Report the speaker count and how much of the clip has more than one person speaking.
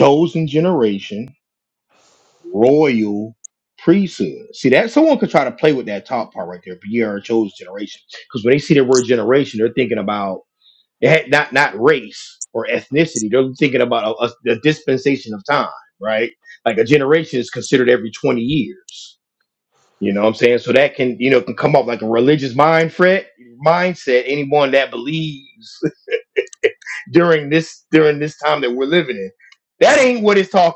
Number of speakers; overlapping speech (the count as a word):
one, no overlap